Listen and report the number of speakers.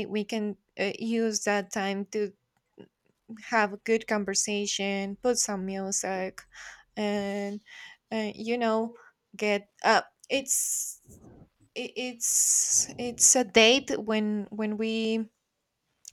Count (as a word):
one